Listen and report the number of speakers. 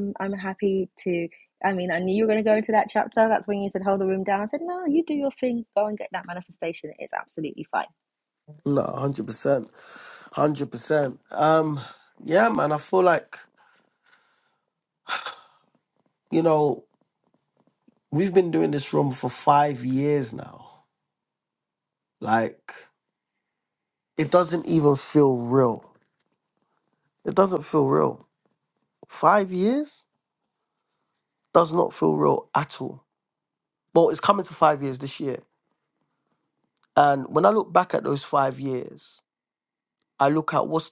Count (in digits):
2